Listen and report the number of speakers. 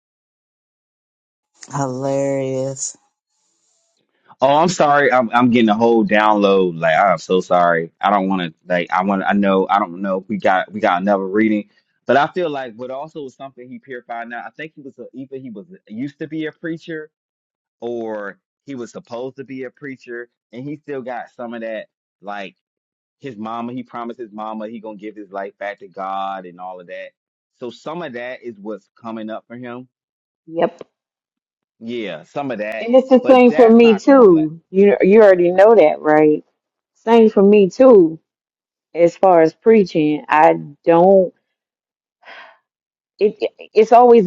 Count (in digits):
3